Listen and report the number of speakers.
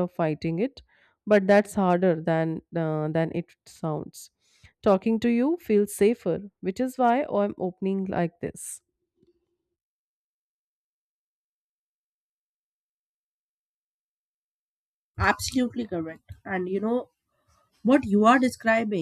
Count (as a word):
two